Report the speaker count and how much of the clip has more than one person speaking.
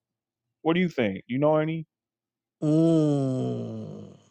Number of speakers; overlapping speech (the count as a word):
two, no overlap